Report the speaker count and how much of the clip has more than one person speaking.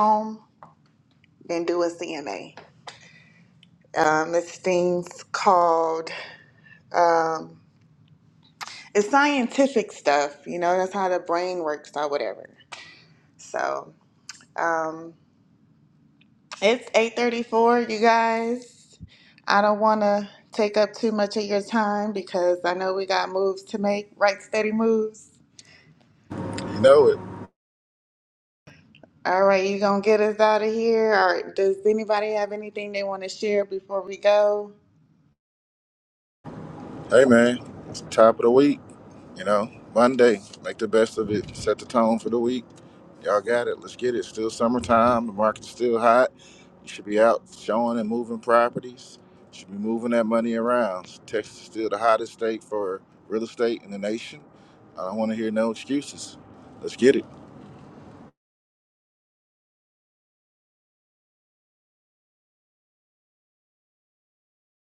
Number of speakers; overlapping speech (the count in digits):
2, no overlap